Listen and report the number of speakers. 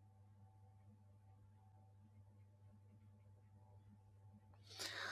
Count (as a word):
zero